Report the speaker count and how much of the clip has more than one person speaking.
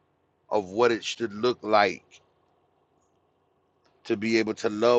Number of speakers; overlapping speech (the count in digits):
1, no overlap